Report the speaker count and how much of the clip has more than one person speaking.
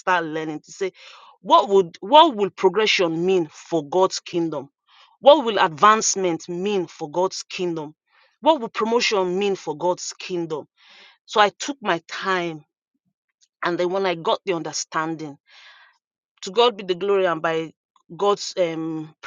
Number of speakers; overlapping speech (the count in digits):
1, no overlap